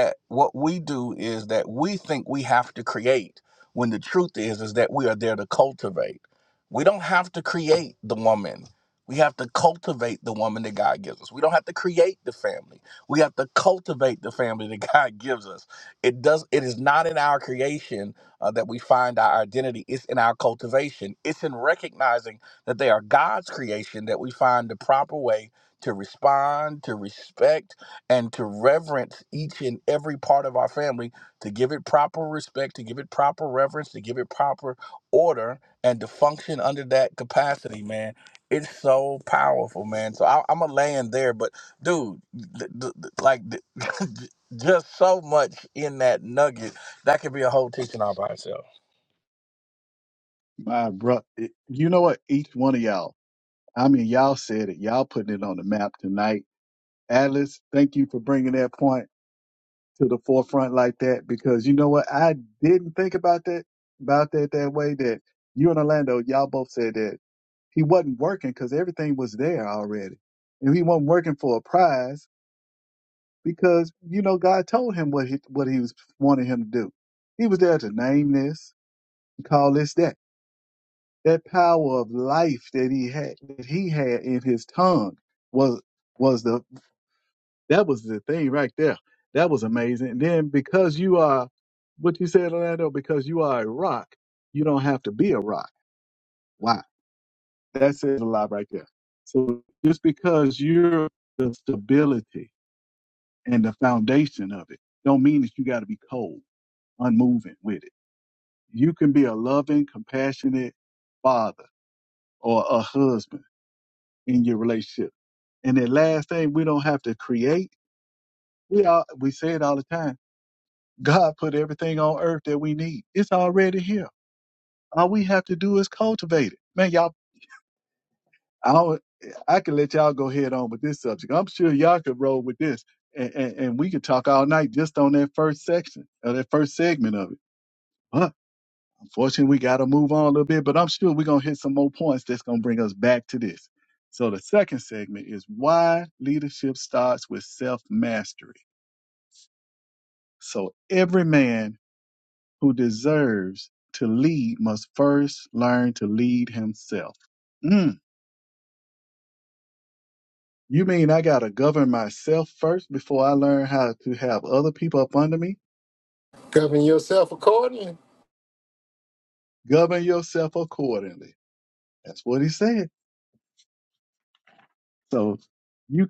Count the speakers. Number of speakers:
3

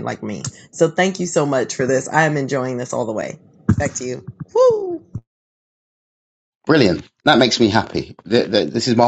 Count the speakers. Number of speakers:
2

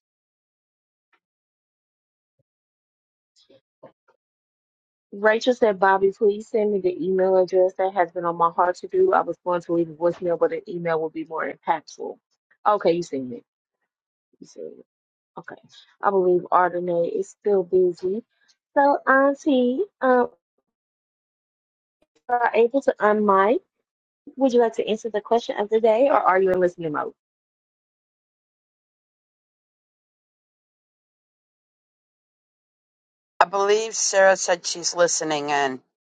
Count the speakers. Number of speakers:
2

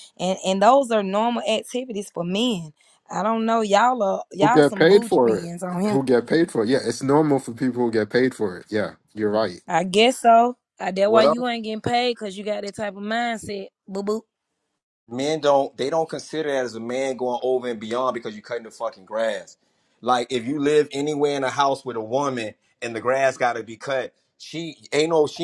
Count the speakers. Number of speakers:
3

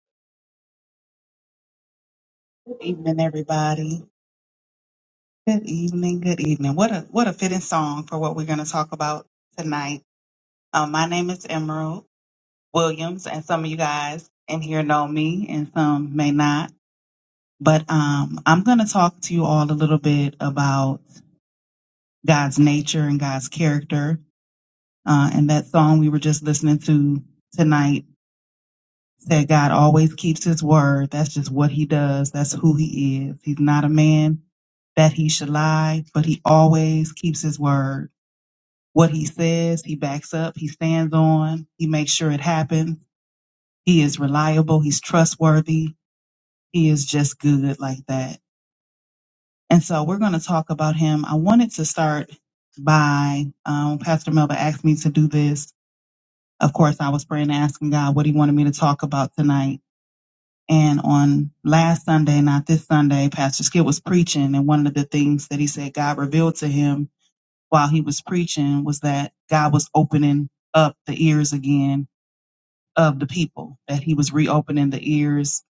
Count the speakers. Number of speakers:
1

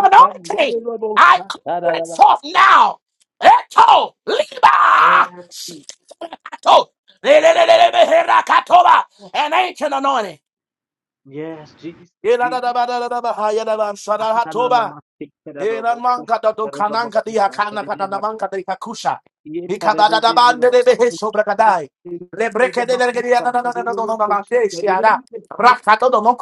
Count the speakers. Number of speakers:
2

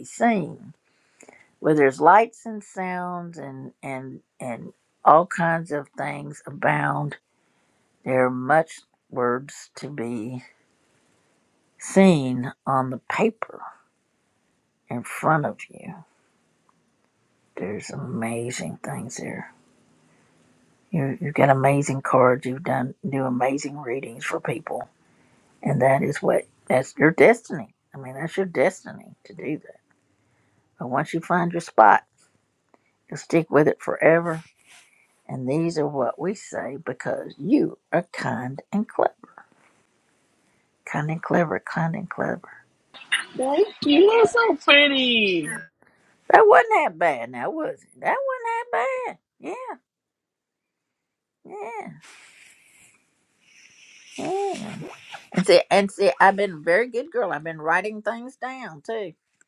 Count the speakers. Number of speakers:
2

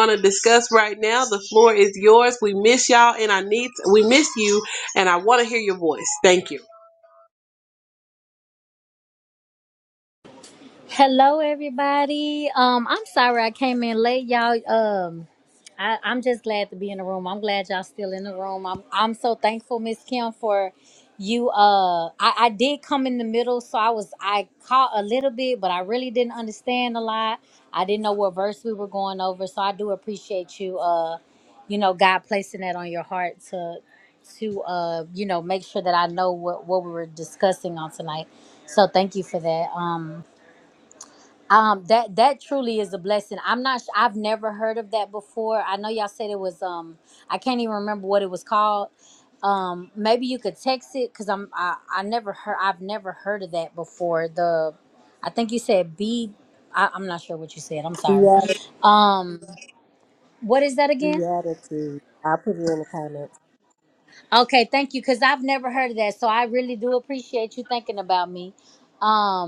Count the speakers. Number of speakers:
3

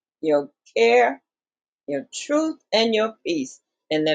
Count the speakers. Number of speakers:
1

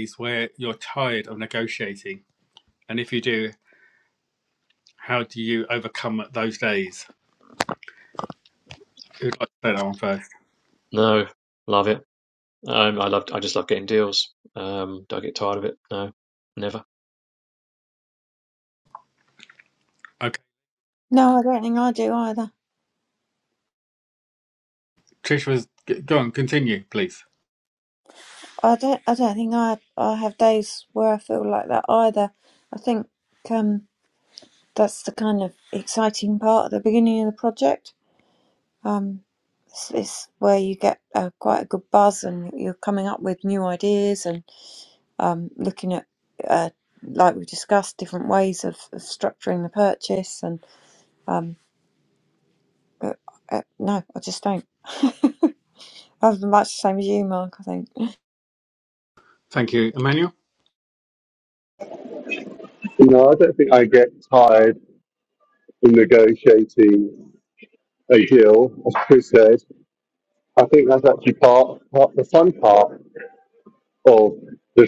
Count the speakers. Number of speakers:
4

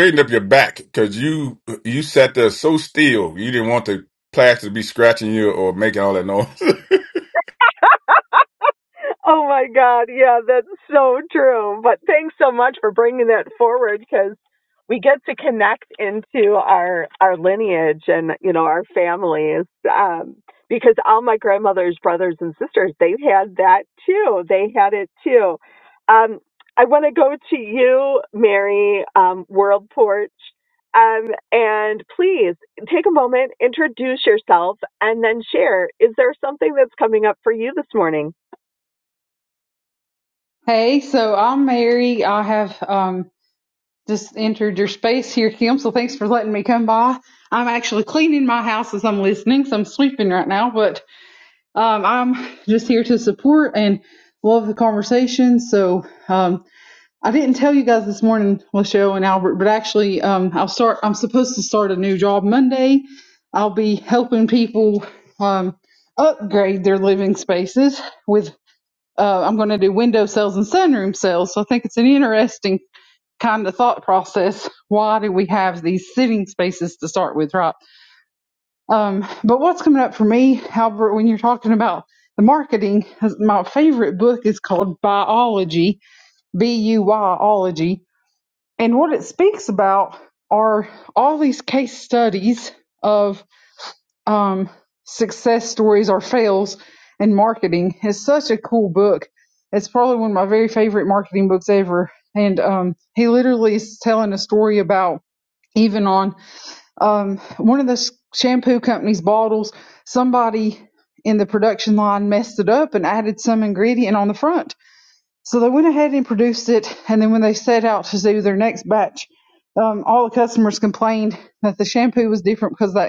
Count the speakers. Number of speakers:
3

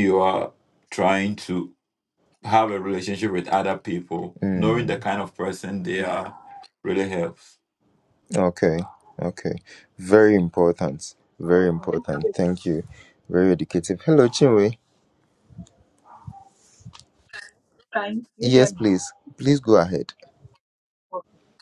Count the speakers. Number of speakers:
3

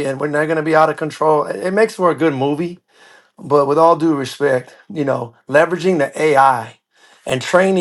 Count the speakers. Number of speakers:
1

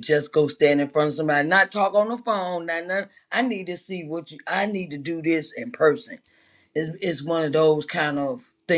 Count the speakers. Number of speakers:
1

